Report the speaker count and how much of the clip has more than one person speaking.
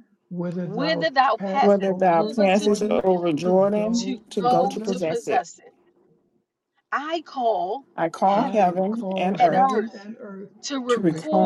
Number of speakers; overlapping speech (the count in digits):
3, about 58%